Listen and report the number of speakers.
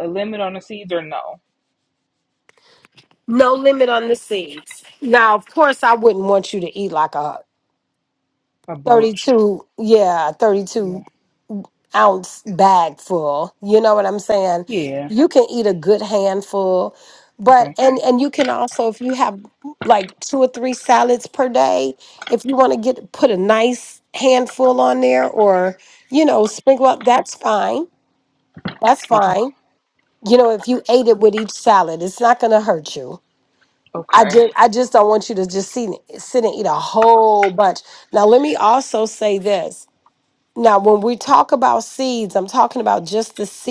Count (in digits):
2